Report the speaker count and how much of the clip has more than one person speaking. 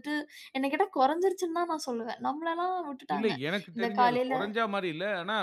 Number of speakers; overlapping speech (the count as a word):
two, about 16%